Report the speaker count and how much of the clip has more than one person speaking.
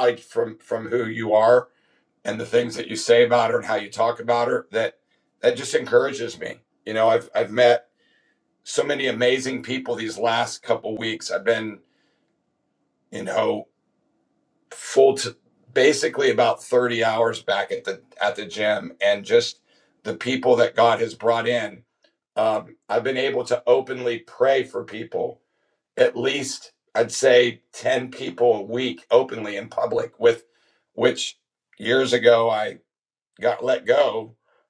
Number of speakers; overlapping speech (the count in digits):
1, no overlap